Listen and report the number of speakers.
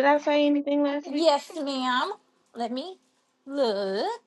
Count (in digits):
2